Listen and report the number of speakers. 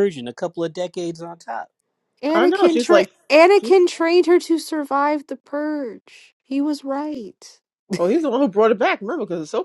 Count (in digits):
3